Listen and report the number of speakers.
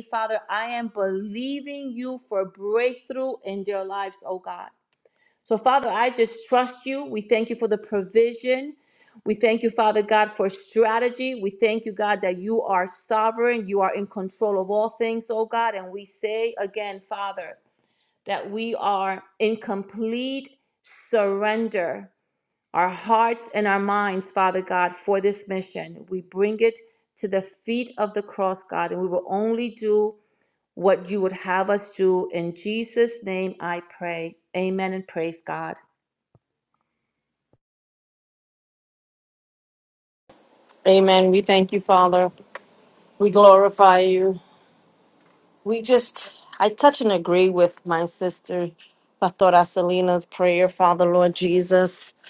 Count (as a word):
two